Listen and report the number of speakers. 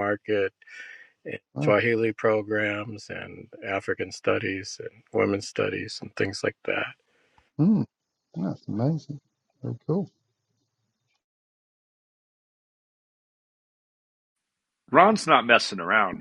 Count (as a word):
three